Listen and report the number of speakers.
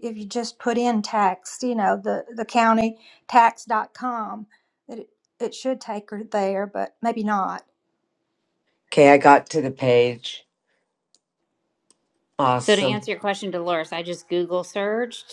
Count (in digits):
3